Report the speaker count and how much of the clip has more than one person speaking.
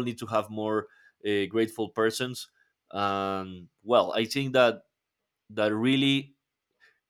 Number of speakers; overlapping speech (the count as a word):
one, no overlap